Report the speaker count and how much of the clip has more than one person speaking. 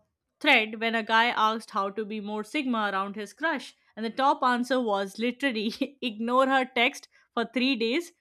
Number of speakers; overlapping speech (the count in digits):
1, no overlap